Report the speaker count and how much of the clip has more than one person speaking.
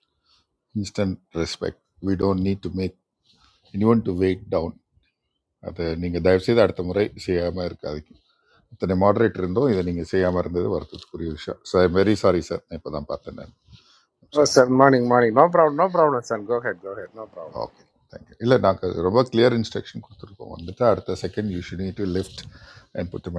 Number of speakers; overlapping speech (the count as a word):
two, about 1%